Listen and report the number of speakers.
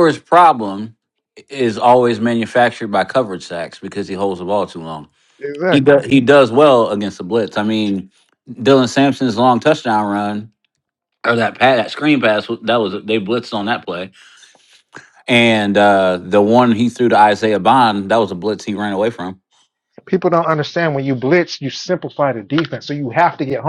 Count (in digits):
2